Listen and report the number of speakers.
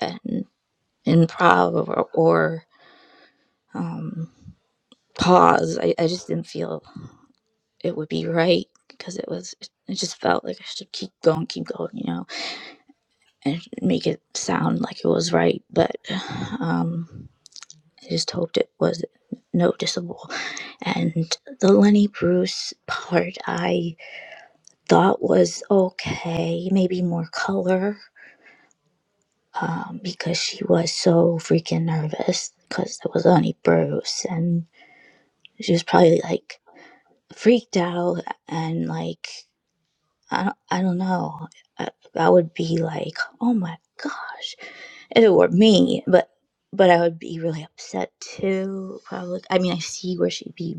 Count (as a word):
one